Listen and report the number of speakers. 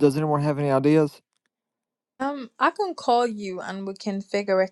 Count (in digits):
2